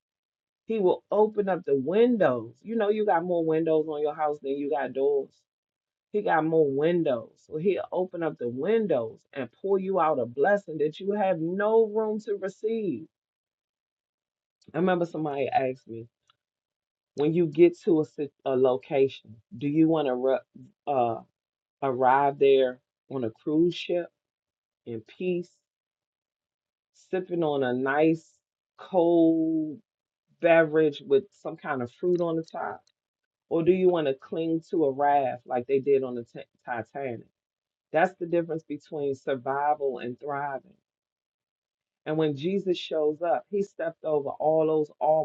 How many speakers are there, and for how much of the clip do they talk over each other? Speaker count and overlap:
one, no overlap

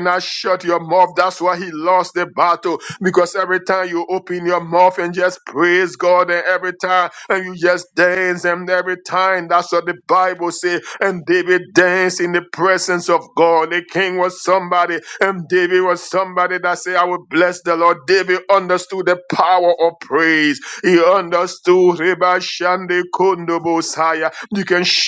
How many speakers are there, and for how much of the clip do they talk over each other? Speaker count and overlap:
one, no overlap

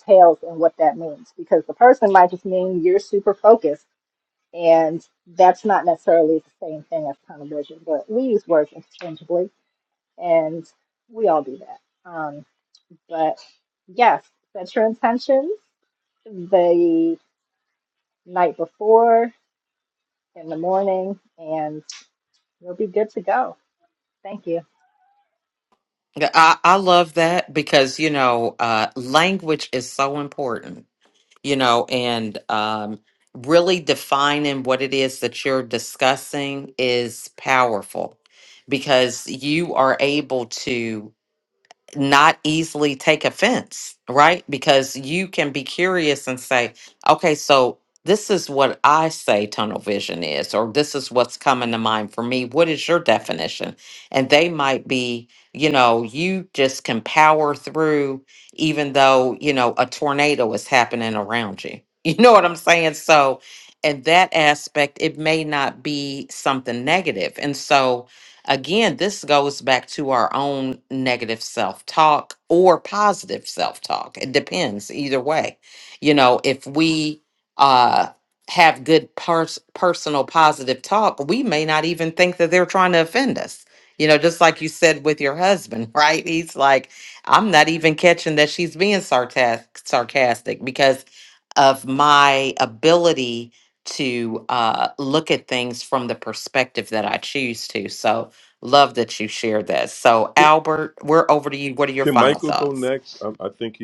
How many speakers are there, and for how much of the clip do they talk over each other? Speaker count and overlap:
three, about 1%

